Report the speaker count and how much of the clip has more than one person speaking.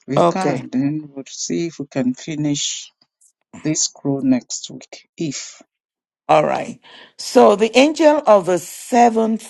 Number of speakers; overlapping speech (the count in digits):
2, about 5%